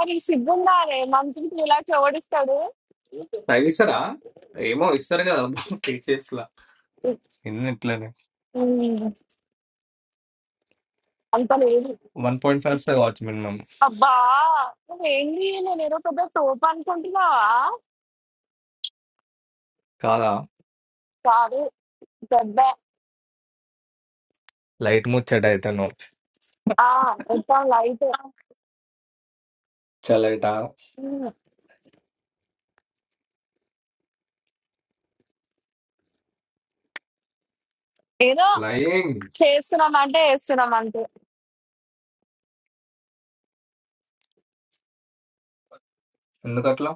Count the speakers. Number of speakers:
two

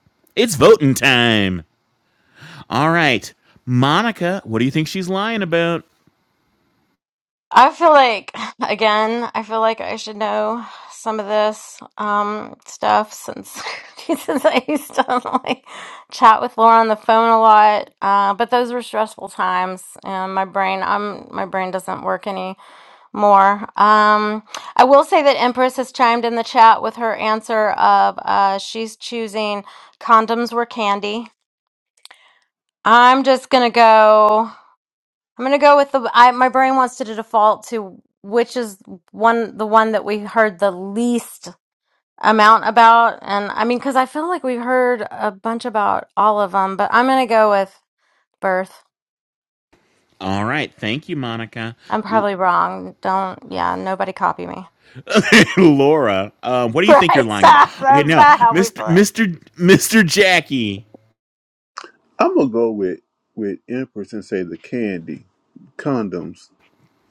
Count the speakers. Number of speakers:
three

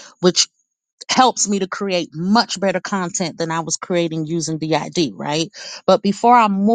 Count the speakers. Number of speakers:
one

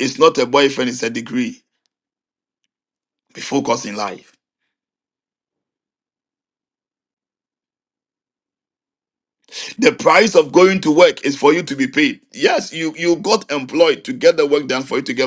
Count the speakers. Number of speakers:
one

